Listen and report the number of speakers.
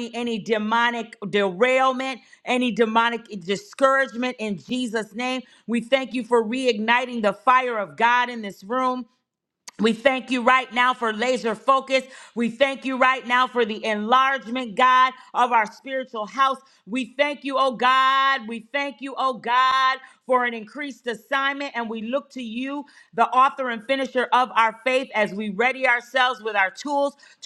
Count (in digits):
1